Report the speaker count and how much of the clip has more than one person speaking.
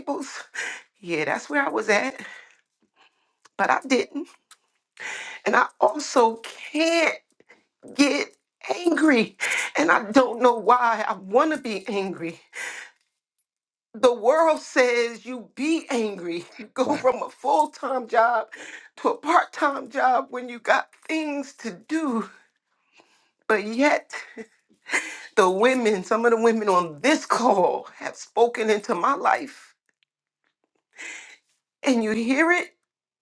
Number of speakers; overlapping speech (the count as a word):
one, no overlap